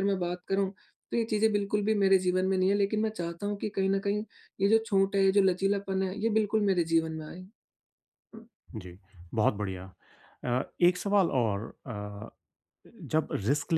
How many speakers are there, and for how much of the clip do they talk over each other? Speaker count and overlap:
2, no overlap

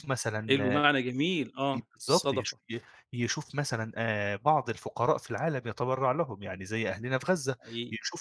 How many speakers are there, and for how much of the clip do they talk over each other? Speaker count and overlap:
2, about 14%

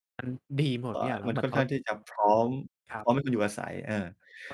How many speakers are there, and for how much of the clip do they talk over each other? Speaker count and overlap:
2, about 15%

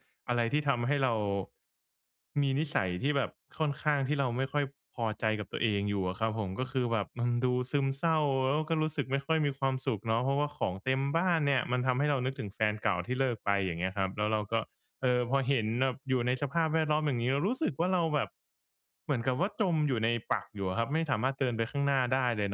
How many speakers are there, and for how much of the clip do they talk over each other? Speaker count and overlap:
1, no overlap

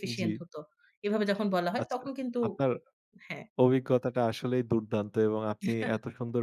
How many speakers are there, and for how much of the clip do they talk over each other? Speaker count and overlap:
2, about 12%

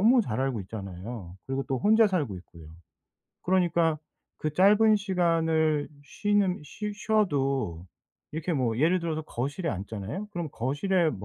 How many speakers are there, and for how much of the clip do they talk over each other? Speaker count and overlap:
1, no overlap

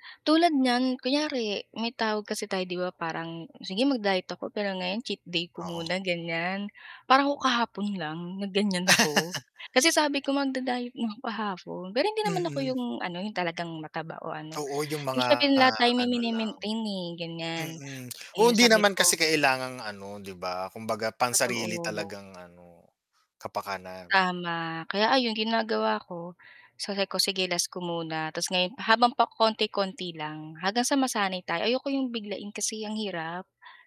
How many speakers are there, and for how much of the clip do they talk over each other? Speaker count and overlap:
2, about 10%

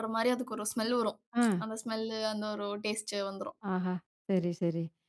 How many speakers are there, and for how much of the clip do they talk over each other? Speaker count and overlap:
2, under 1%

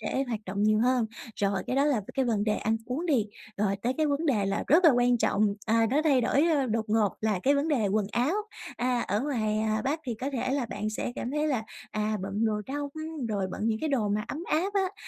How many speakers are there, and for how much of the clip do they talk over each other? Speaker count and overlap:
1, no overlap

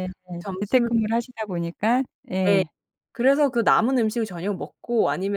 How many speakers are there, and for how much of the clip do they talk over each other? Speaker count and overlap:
2, about 10%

